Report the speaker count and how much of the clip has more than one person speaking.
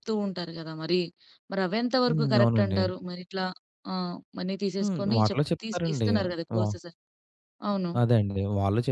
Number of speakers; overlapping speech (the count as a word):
two, about 26%